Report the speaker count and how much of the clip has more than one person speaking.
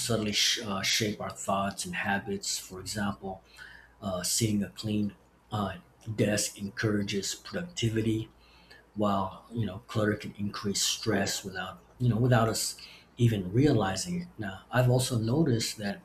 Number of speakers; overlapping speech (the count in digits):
1, no overlap